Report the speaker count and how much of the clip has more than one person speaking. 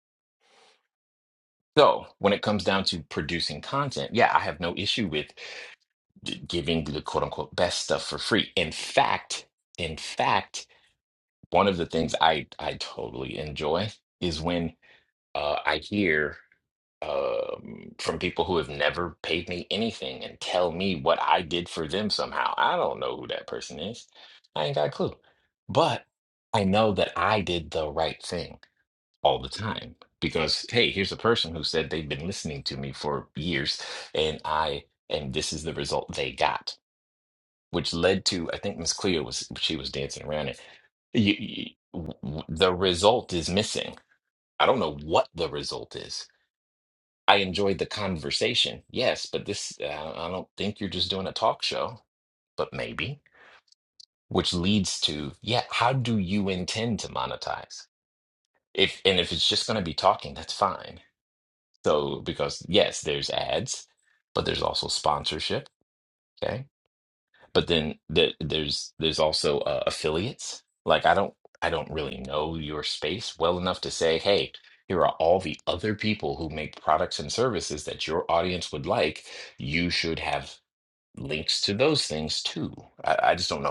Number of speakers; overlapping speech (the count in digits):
1, no overlap